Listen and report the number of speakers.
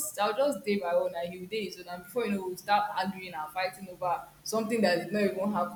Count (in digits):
1